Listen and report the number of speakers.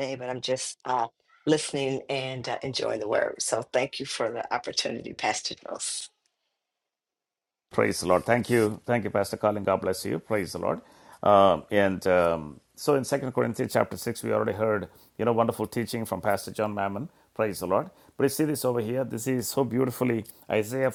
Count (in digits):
2